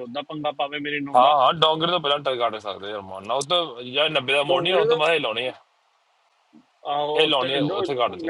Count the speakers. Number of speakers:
two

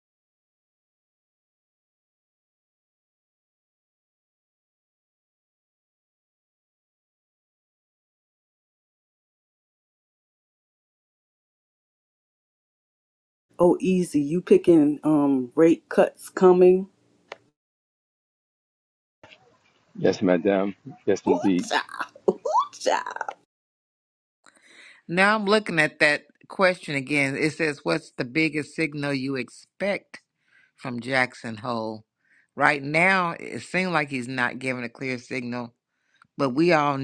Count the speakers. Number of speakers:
three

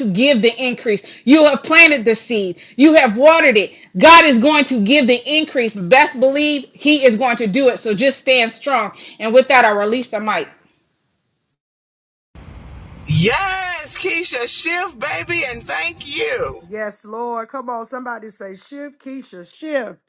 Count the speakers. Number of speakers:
three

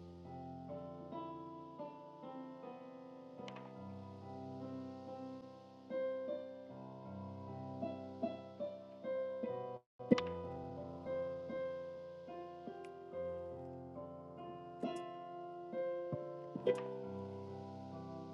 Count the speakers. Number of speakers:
zero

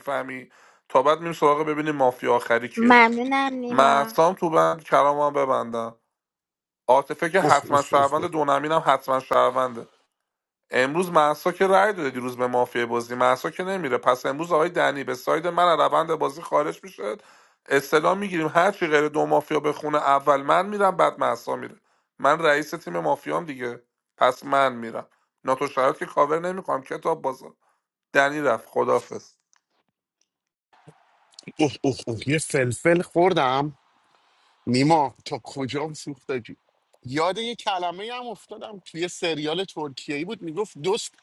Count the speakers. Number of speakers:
three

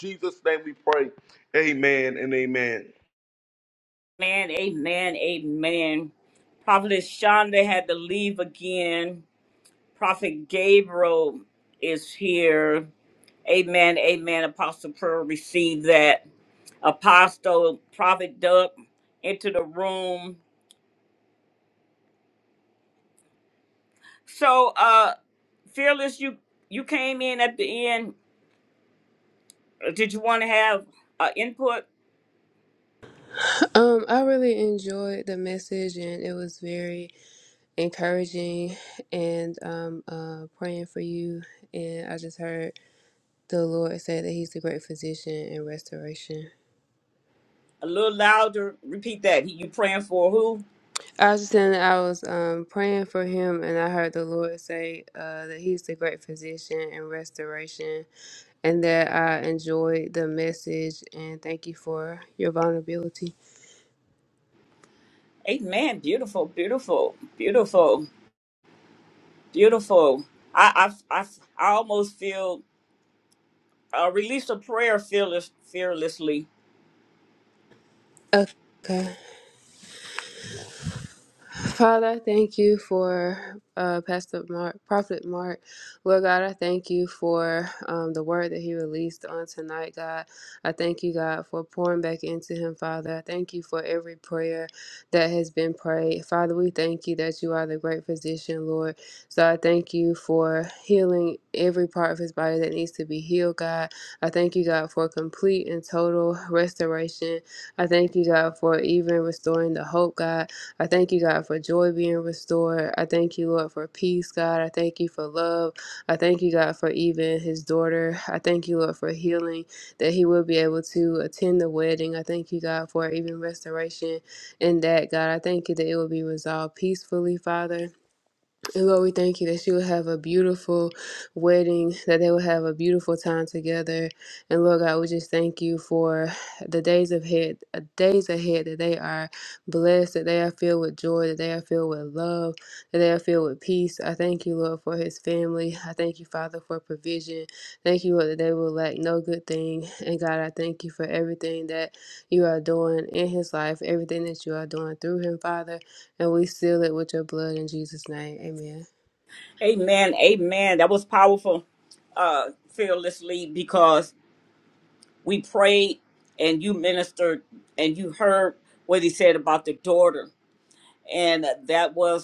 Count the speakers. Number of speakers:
three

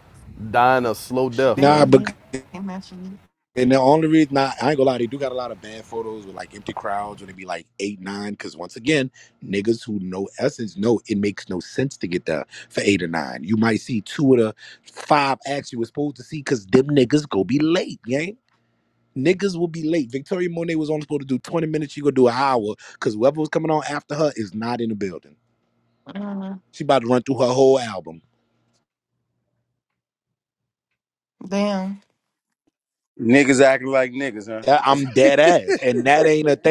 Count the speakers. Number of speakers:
four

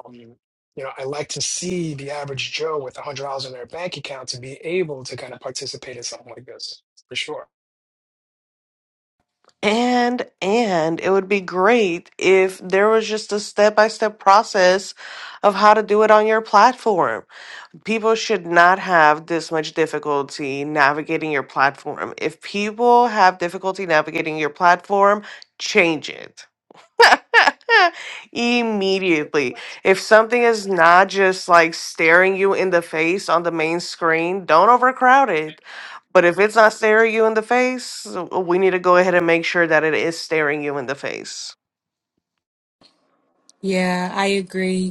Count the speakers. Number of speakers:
three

